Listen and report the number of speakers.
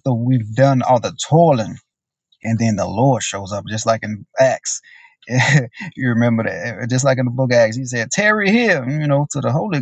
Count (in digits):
1